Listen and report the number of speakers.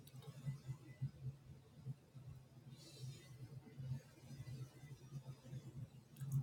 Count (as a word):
zero